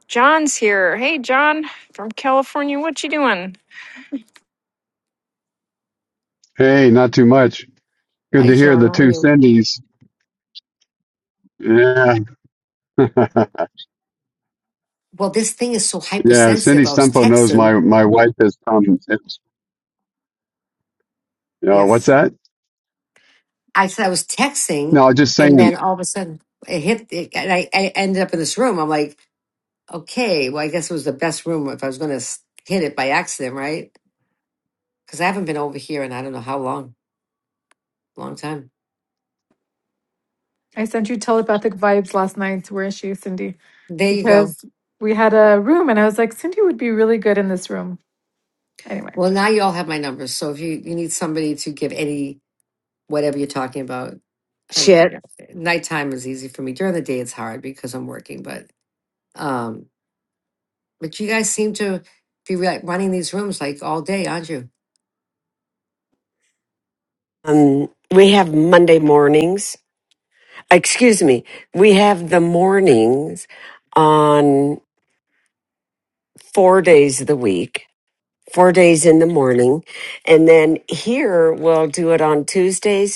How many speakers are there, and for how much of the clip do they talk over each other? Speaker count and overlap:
5, about 4%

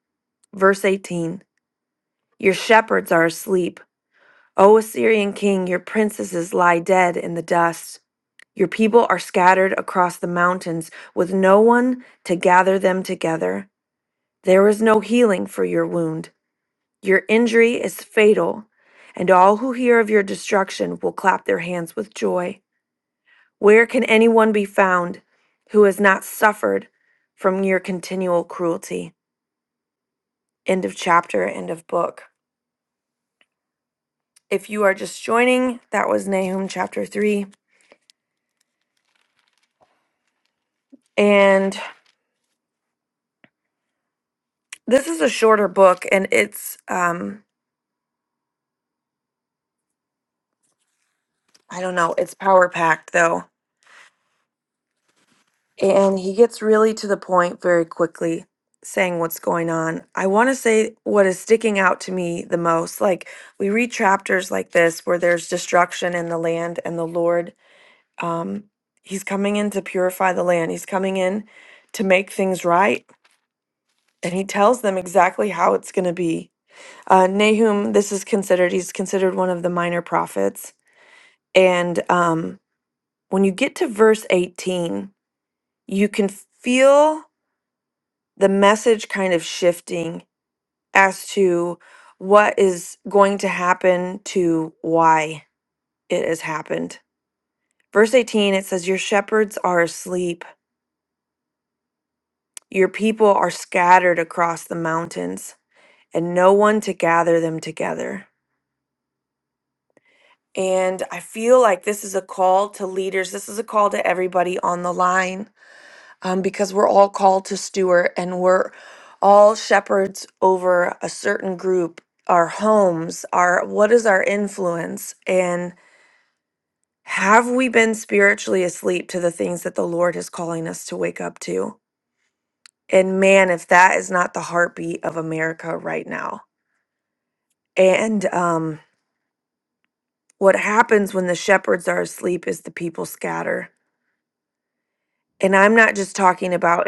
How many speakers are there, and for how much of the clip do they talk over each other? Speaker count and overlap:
1, no overlap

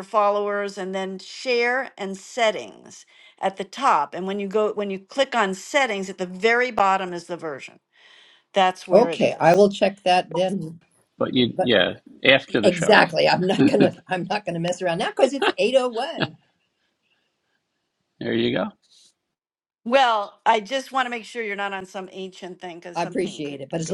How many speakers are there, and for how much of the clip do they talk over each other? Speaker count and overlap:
3, about 8%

